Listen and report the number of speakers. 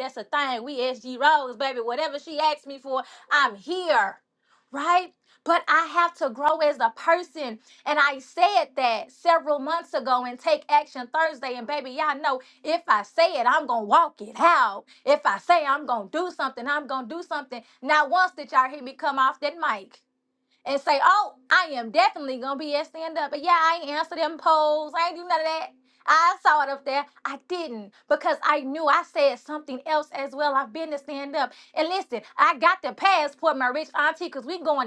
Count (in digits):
1